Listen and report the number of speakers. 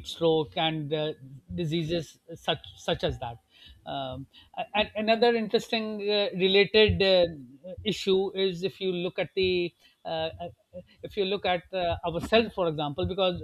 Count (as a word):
one